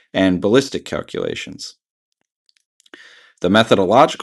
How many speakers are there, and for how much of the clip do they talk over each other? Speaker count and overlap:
1, no overlap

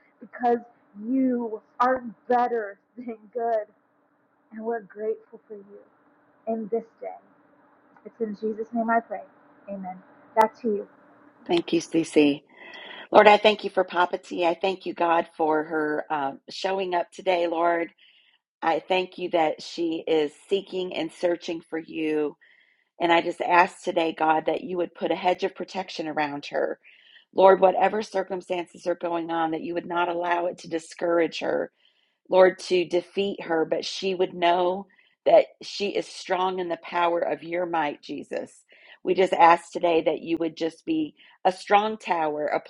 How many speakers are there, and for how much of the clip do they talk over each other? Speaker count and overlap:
2, no overlap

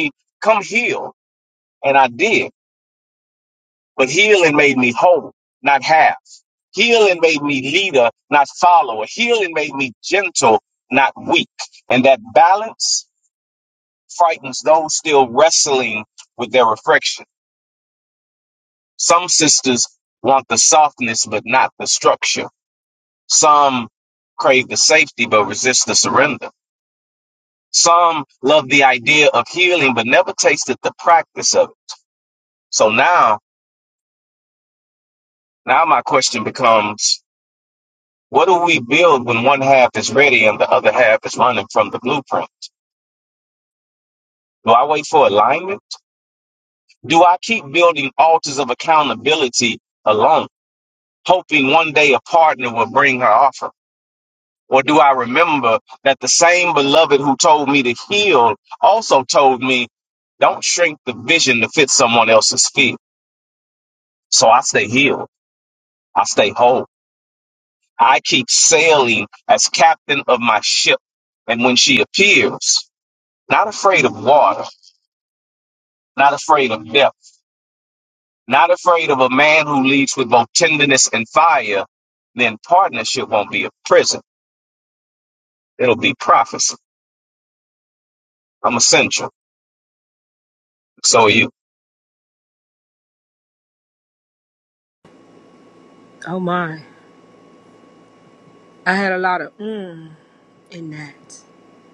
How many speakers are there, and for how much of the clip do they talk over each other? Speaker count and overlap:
2, no overlap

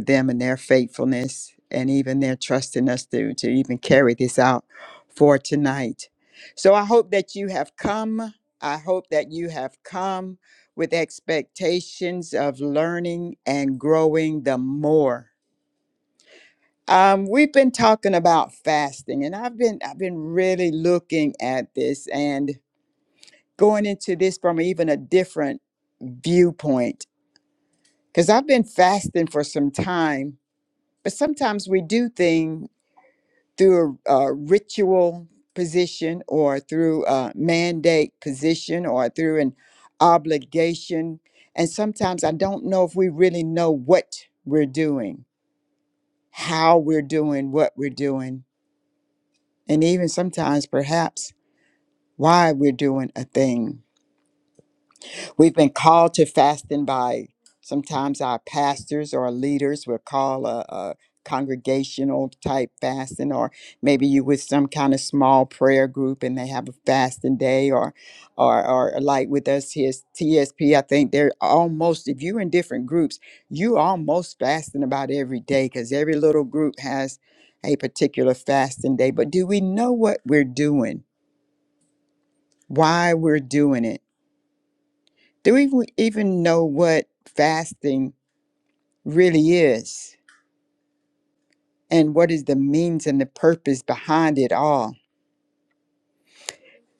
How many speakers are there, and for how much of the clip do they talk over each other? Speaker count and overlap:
1, no overlap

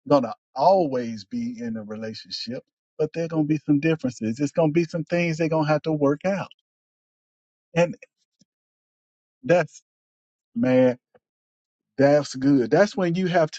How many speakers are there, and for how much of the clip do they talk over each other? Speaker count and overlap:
1, no overlap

